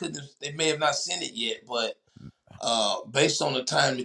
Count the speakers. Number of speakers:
1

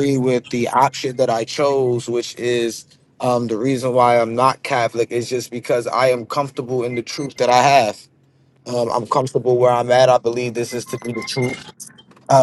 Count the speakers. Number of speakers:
1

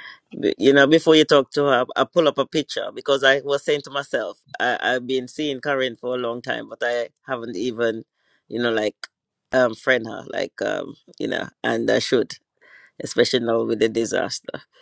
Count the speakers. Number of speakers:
1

